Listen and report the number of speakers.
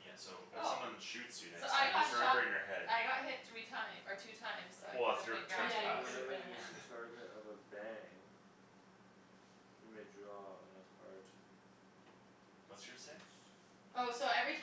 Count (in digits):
4